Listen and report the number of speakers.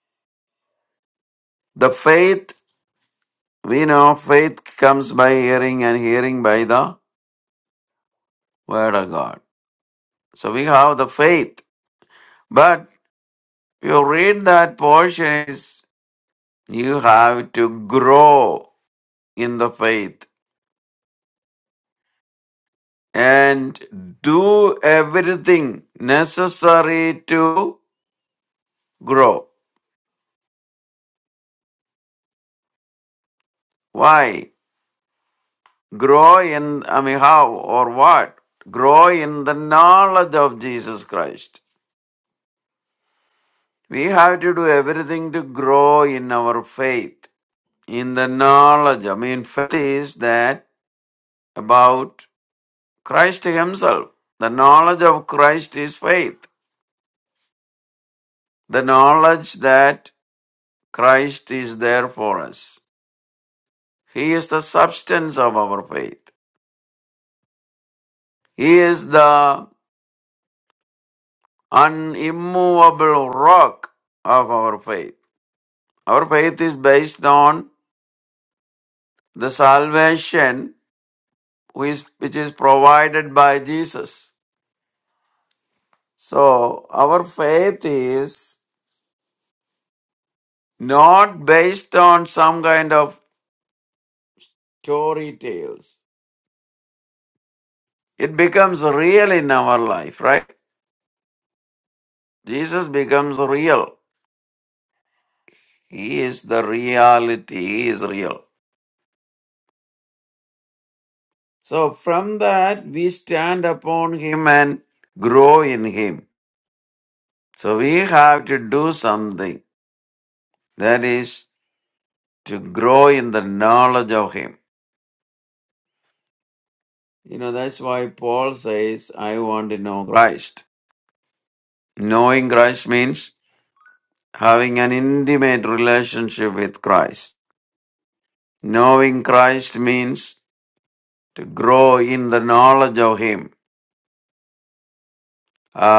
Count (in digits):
1